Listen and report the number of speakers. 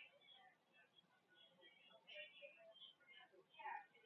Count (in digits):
0